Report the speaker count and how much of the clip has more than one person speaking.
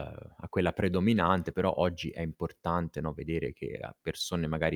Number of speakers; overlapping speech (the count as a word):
one, no overlap